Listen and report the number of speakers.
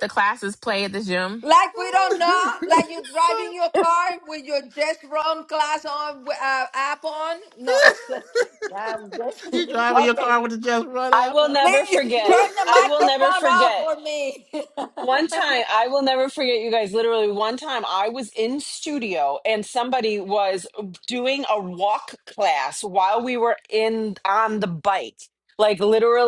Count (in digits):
4